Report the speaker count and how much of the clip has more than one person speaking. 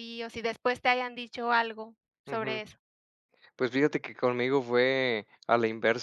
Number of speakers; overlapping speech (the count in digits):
2, about 5%